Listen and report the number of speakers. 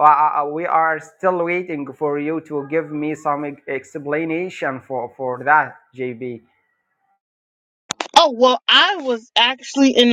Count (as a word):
two